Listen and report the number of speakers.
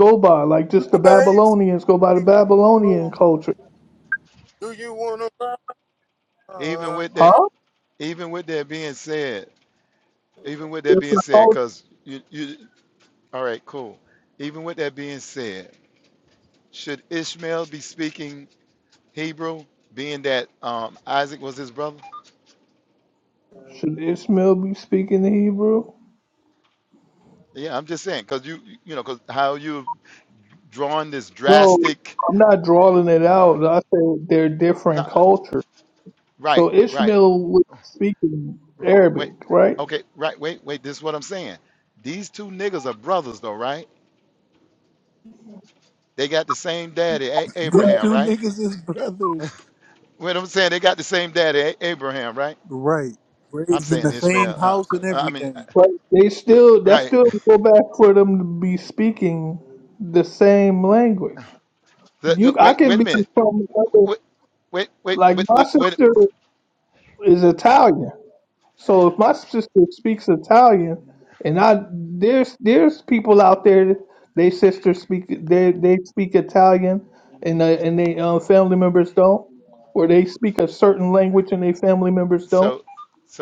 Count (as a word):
four